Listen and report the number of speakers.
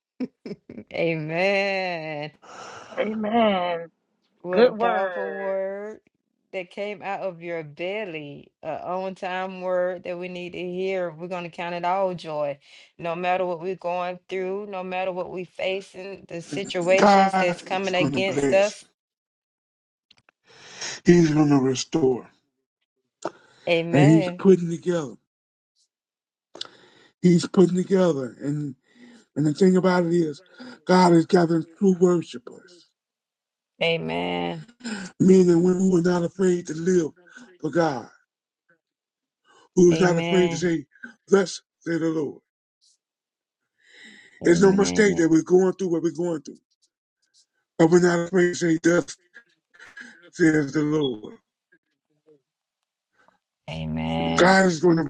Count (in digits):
3